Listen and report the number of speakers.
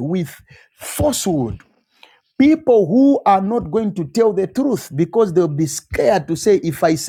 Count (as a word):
one